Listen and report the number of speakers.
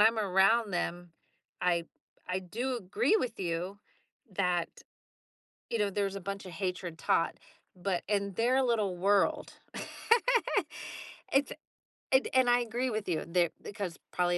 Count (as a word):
one